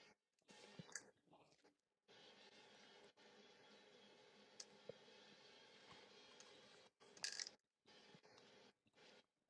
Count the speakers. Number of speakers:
0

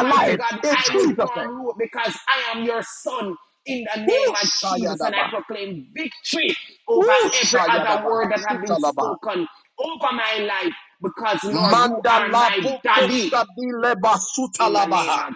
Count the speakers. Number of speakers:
2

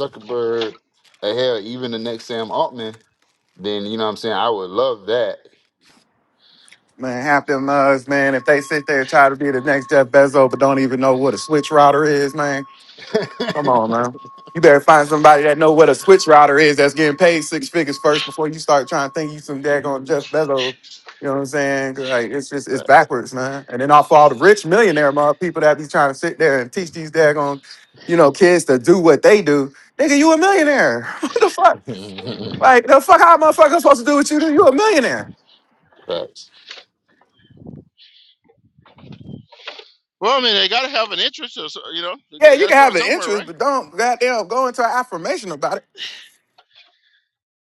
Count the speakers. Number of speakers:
3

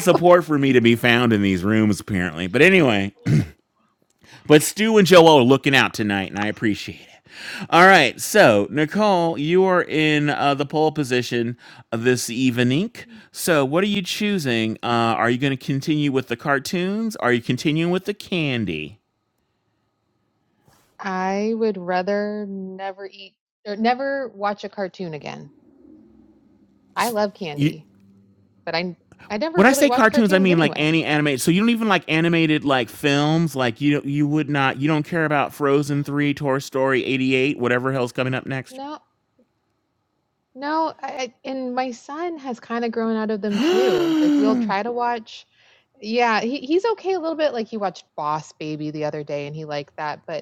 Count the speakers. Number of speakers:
2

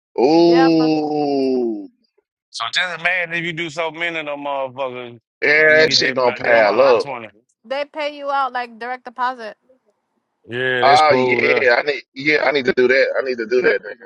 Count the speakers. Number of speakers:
3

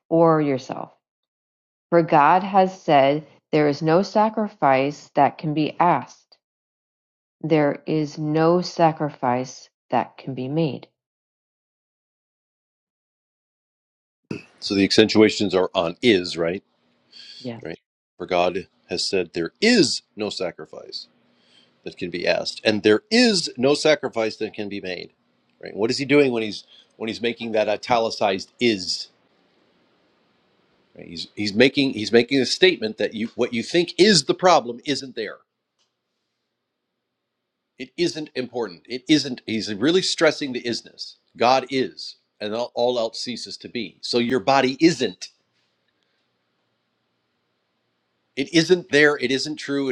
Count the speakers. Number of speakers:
2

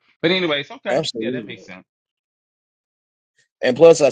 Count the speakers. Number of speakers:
2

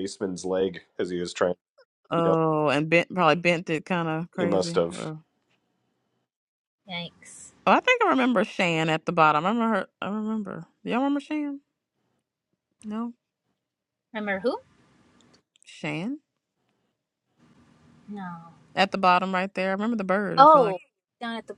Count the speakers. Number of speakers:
3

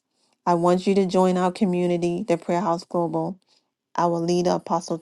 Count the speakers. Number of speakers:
1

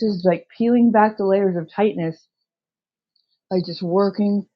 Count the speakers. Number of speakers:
1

